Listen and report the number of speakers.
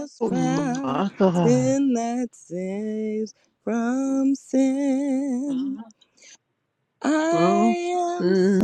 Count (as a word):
two